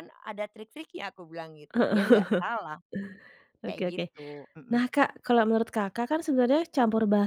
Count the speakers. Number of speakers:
2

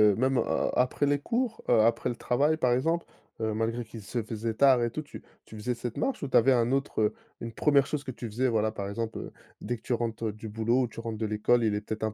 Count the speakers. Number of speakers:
1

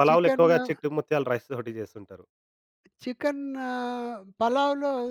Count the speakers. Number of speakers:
2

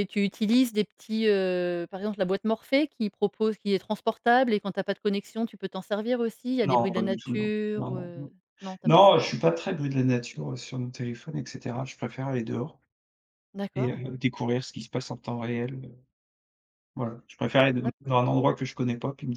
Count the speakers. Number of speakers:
2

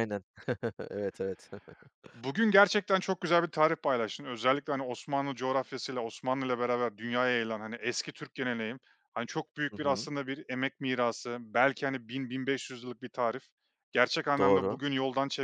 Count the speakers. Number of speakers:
2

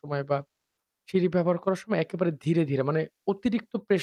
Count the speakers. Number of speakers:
1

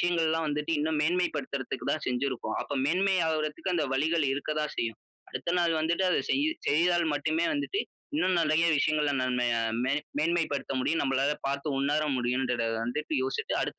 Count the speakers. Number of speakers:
1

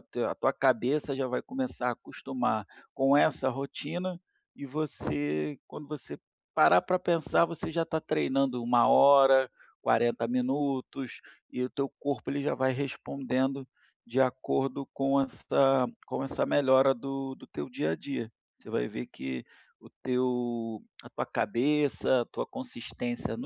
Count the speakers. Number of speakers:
1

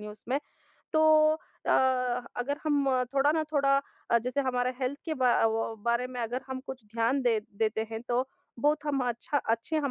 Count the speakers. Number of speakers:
1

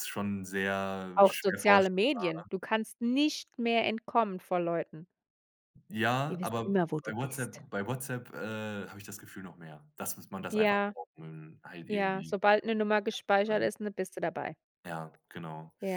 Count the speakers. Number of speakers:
2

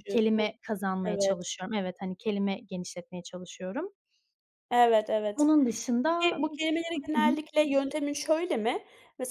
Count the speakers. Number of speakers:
2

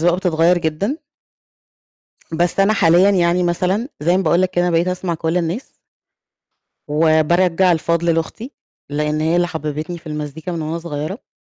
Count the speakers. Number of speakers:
1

